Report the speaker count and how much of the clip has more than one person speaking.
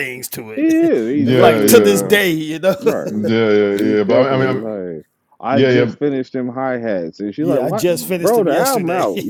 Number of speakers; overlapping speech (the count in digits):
3, about 51%